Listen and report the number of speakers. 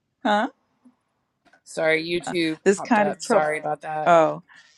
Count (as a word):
two